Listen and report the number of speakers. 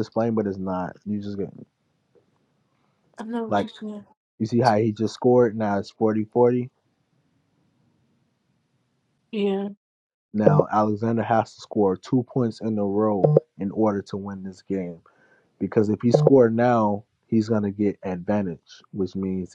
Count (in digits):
2